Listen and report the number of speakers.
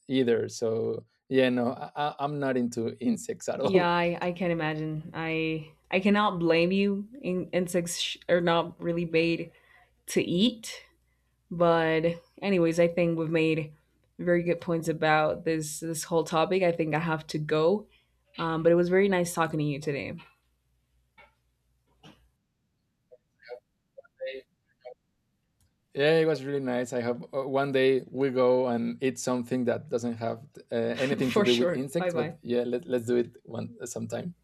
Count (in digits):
2